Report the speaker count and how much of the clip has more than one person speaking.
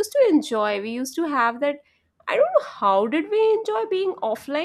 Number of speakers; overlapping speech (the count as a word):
one, no overlap